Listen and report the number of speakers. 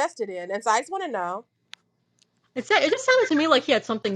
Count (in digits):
2